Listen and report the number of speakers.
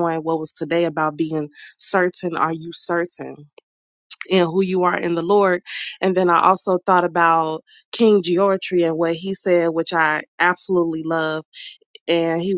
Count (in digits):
1